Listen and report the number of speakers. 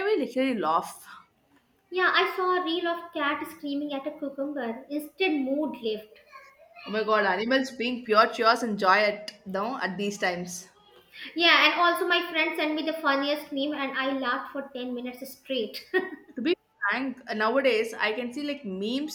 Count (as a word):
two